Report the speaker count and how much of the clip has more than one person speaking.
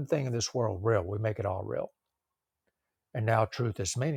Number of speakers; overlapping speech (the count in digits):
1, no overlap